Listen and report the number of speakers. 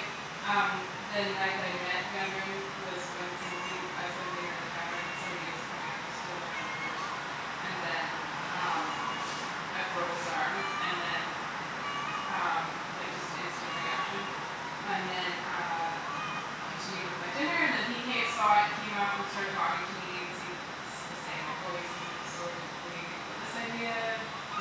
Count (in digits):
1